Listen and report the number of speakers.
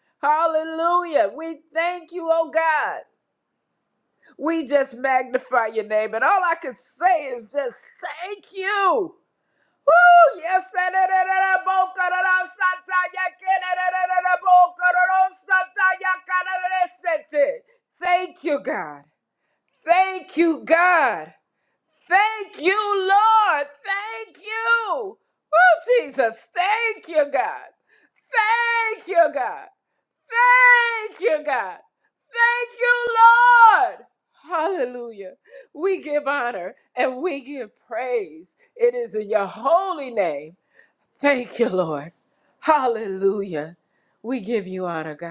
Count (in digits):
1